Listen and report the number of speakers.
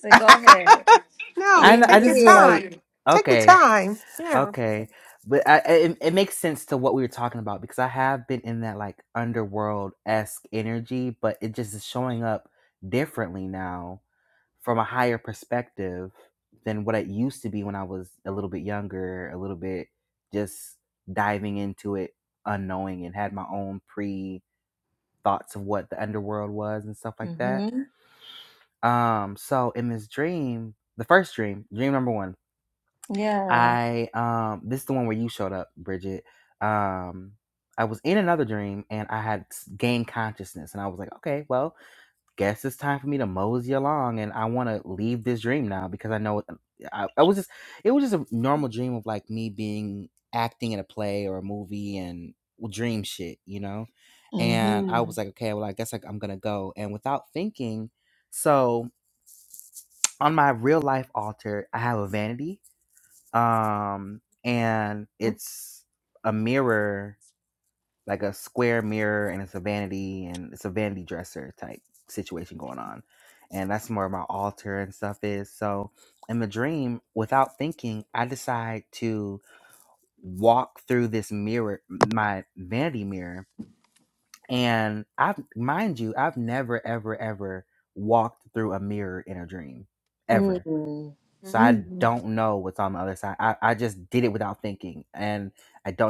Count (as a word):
three